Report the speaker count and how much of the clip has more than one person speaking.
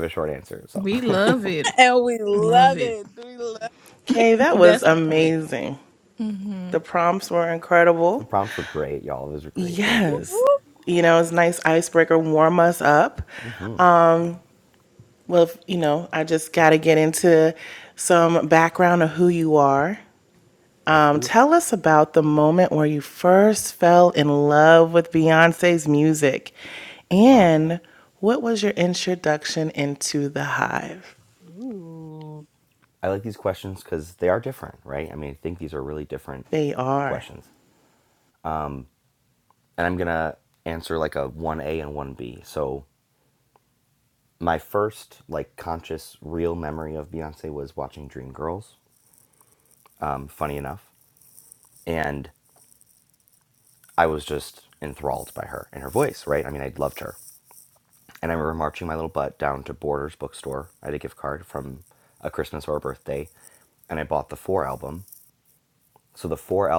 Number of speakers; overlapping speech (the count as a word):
four, about 5%